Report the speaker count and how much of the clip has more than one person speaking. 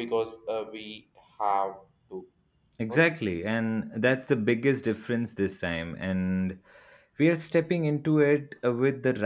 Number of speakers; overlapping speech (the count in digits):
2, about 3%